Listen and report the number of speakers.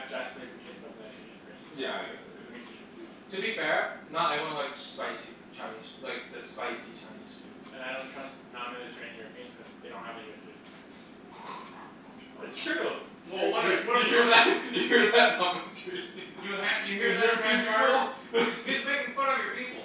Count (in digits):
4